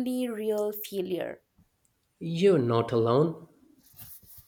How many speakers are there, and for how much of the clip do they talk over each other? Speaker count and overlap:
2, no overlap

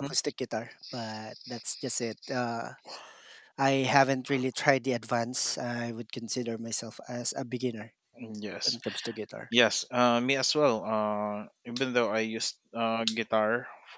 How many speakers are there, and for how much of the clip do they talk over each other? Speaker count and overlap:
2, about 2%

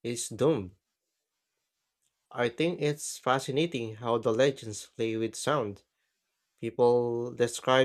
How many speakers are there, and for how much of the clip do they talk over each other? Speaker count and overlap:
1, no overlap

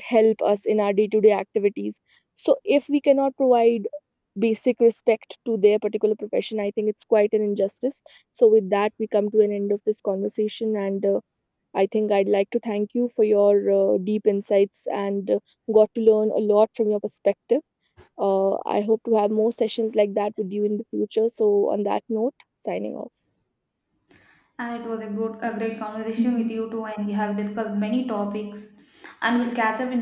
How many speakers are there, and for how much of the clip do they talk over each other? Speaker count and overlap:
2, no overlap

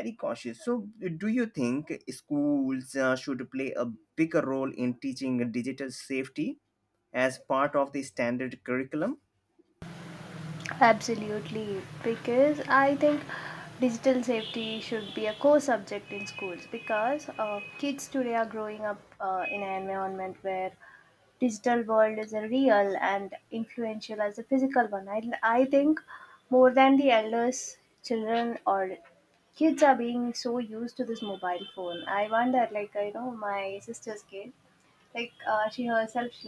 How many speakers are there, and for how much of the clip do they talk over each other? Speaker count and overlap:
2, no overlap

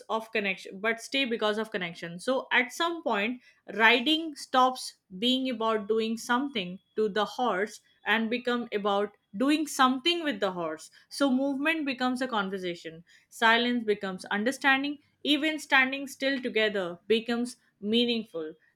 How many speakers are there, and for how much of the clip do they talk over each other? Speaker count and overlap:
1, no overlap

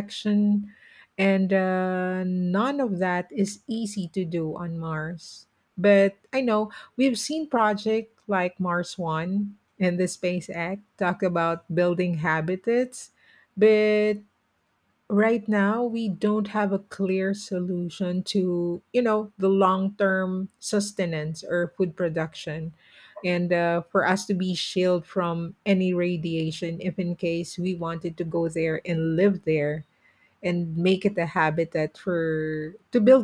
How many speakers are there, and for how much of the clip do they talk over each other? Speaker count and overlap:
1, no overlap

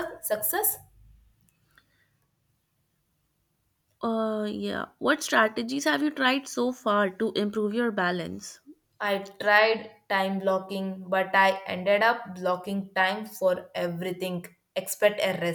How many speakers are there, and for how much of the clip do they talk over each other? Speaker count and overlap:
2, no overlap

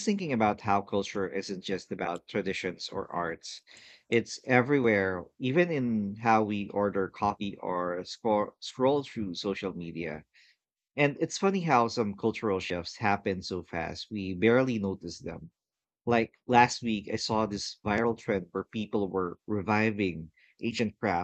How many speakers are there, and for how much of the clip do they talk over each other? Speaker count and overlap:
1, no overlap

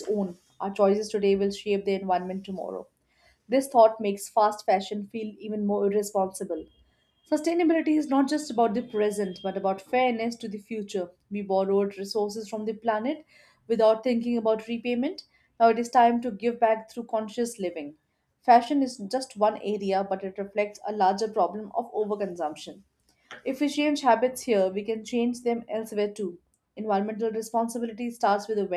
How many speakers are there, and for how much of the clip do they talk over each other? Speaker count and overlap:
1, no overlap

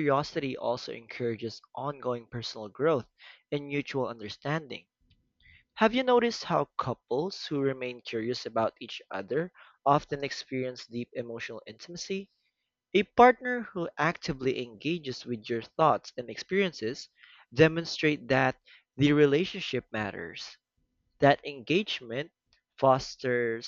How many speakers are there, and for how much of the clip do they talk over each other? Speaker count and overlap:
1, no overlap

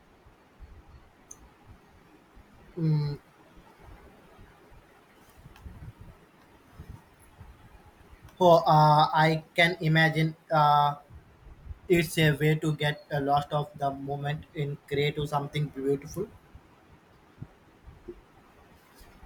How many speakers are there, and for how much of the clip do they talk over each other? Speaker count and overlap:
1, no overlap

